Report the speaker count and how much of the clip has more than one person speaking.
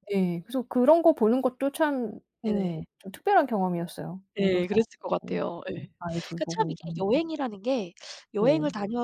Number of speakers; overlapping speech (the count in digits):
2, about 20%